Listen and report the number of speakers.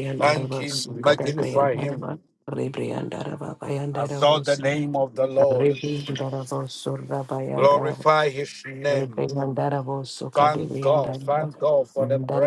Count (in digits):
2